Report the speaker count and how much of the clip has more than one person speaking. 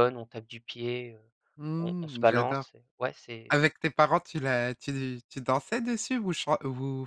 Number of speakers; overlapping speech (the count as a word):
two, about 12%